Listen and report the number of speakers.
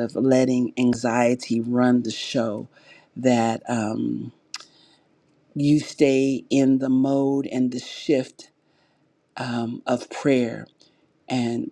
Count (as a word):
one